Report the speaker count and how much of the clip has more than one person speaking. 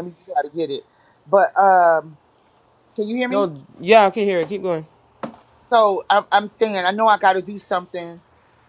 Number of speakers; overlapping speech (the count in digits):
2, about 2%